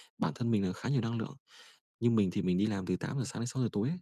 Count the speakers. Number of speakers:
one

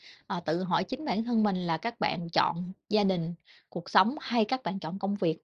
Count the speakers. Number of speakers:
one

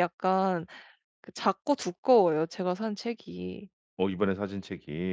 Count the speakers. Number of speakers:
two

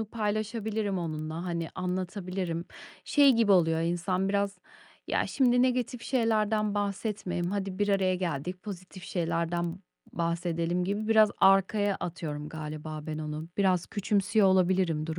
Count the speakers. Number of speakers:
one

